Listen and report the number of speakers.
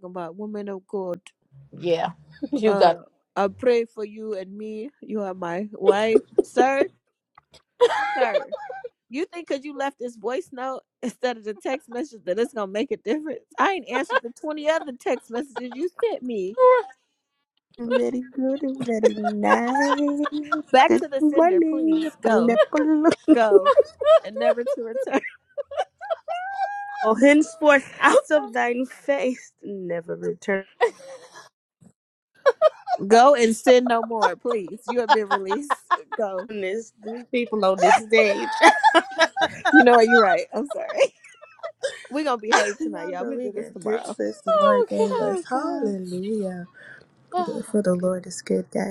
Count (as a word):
three